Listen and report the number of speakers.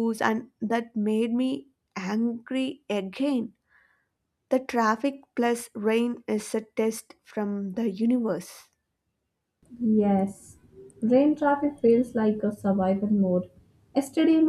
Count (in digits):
2